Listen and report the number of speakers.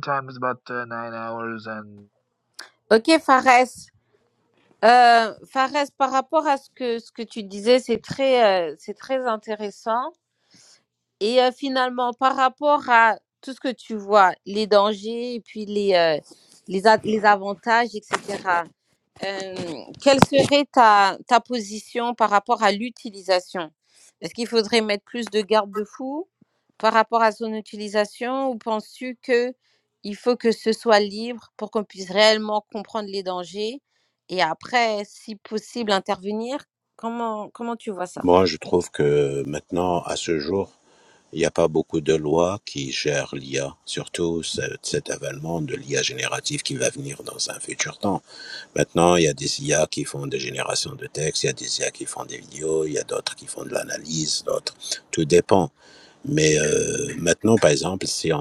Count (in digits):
3